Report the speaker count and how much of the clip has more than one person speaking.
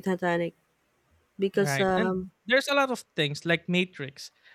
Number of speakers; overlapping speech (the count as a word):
two, about 12%